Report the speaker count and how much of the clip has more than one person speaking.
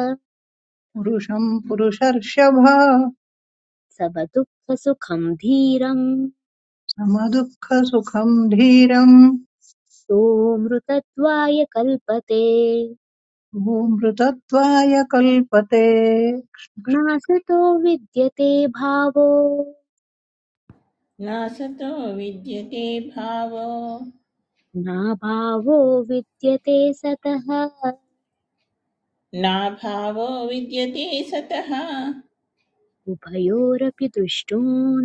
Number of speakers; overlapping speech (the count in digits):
3, no overlap